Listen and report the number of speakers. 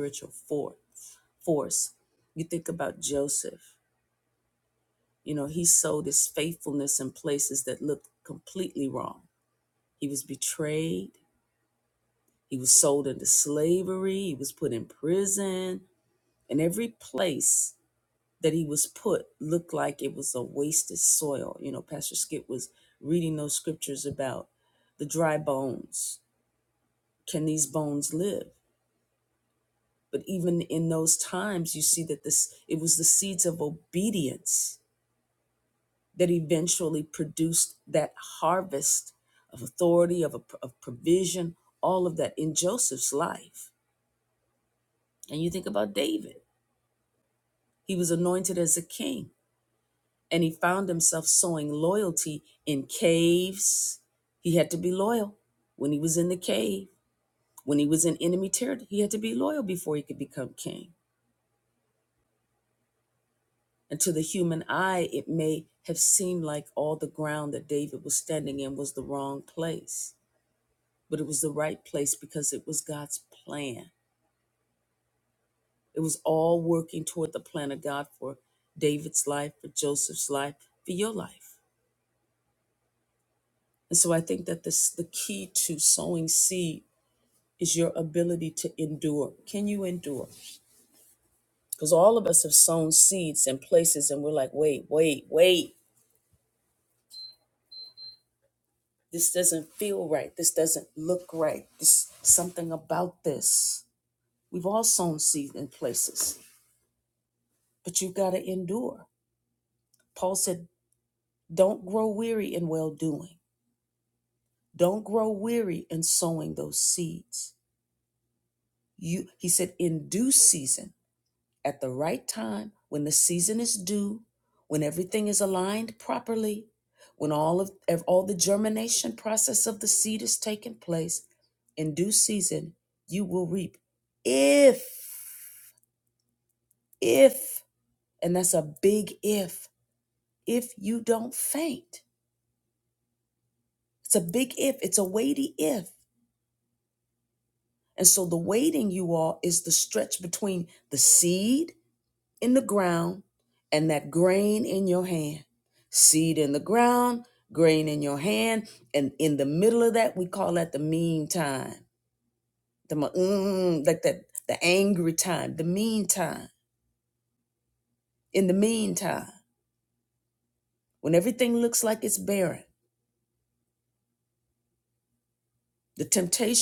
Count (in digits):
1